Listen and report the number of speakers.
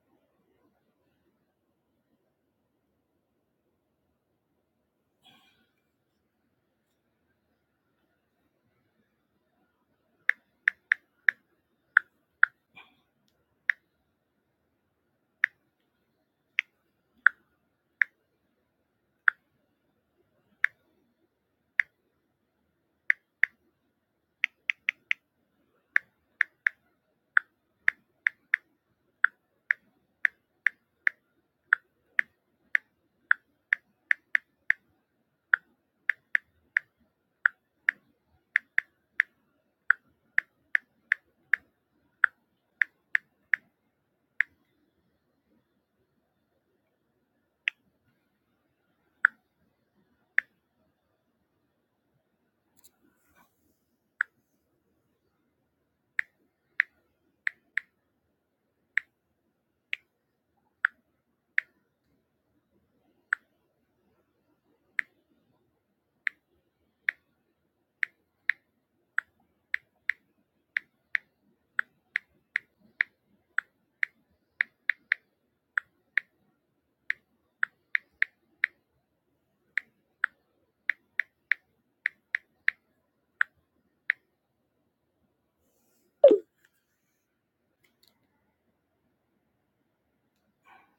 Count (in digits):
0